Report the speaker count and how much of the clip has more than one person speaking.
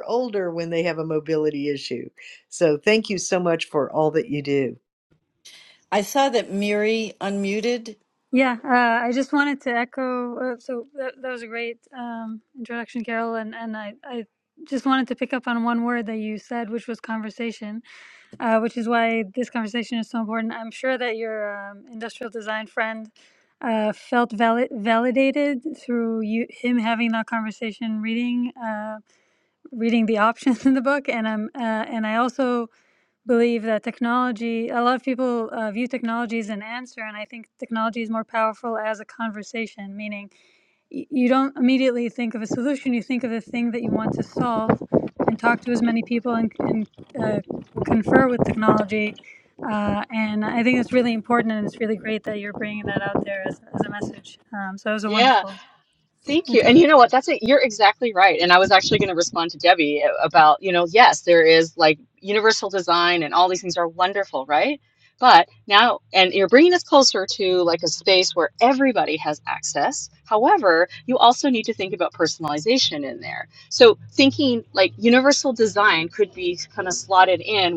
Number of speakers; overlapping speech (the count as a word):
four, about 1%